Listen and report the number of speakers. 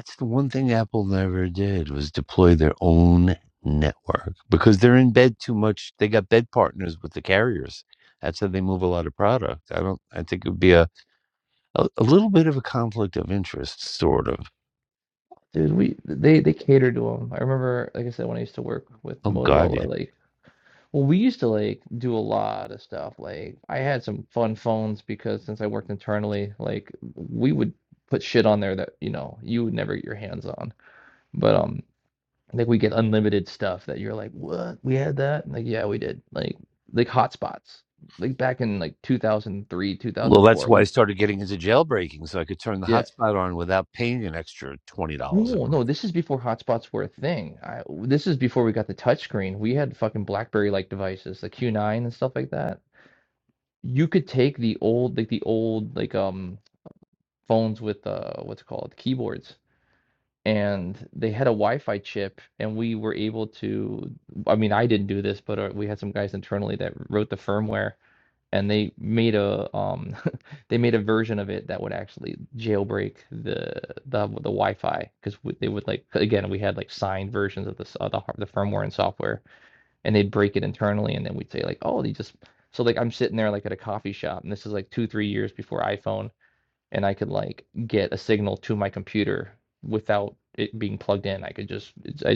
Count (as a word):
two